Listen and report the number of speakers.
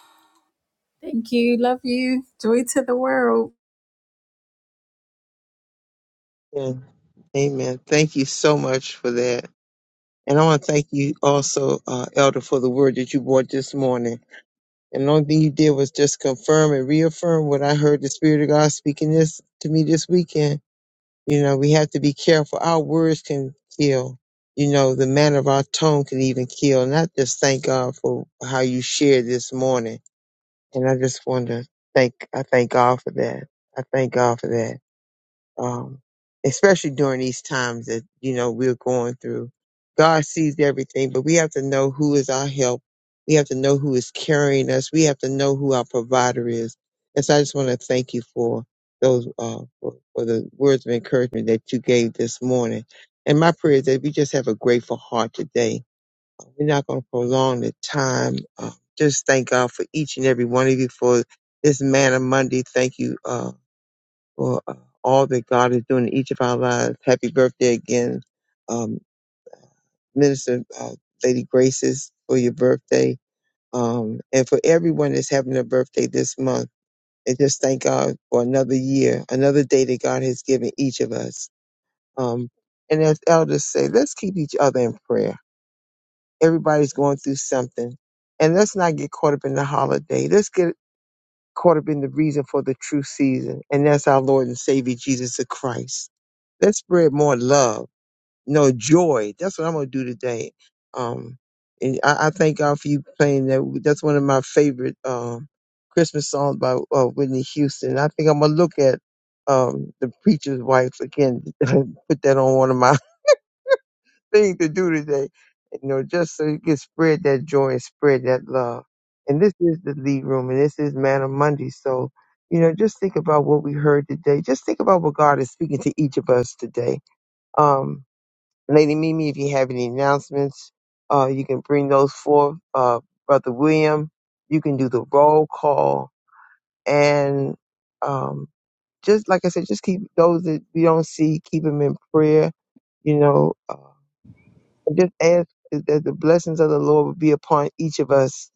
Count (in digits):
2